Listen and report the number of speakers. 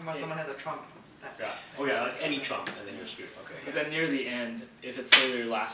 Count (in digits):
3